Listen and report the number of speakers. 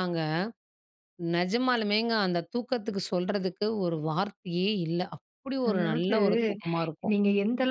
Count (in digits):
2